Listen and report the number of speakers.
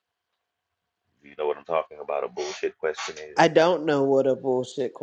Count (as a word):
two